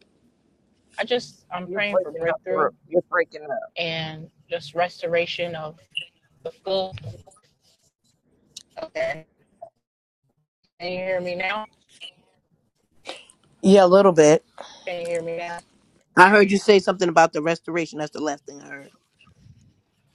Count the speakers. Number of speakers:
3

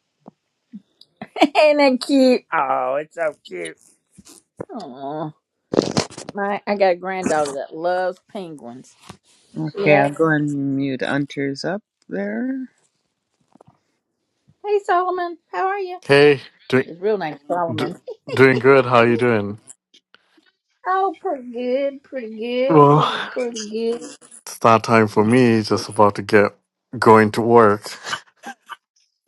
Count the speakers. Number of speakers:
3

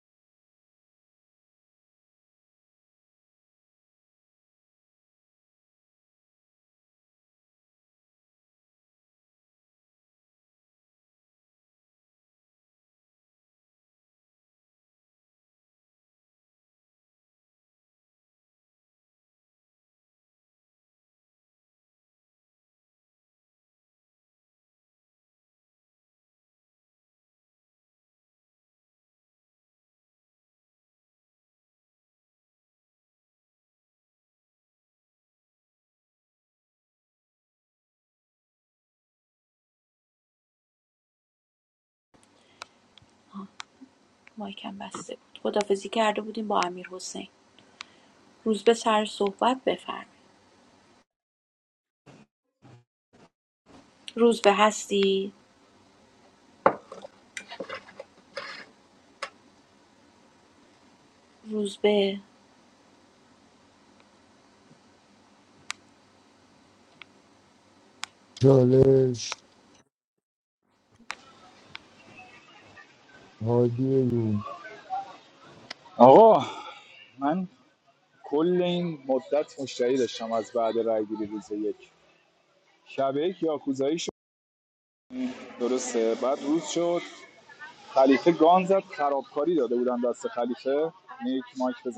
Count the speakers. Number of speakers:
3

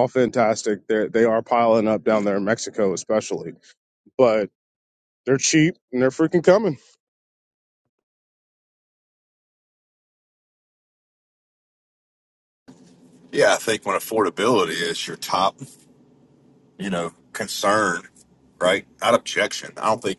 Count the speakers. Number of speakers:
2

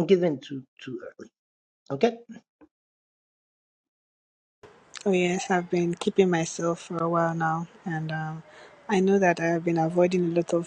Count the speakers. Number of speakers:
2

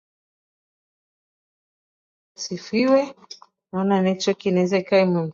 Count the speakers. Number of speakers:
1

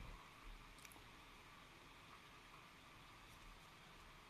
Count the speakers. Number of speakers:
0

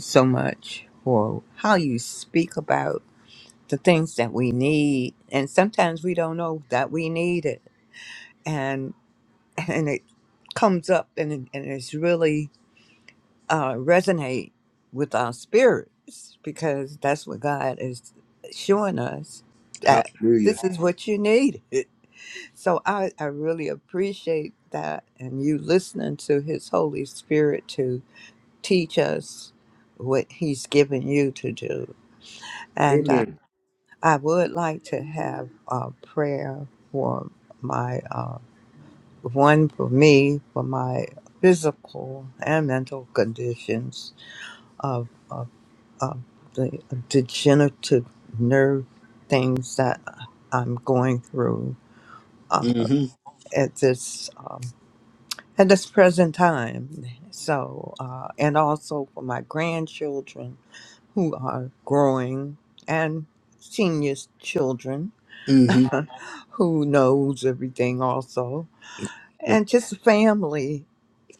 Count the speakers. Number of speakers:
2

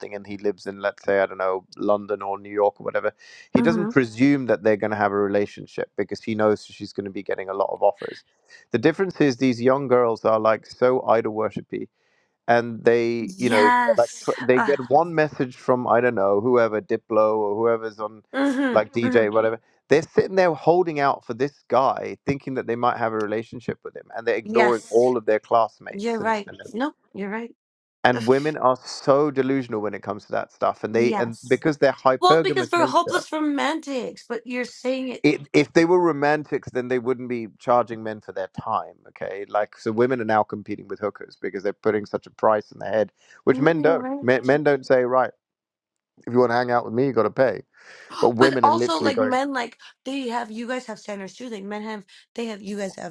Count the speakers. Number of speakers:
2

